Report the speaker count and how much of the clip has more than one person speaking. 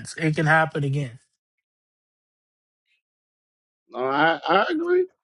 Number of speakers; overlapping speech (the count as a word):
two, no overlap